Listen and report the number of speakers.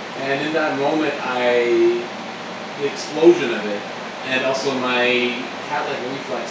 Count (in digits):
1